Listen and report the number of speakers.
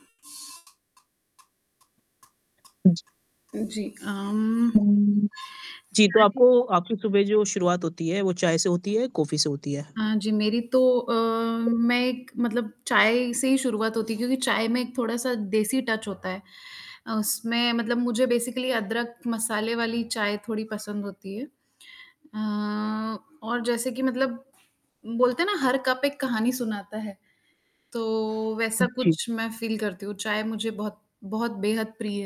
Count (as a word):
two